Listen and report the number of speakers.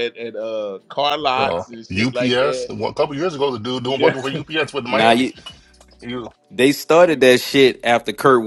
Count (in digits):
3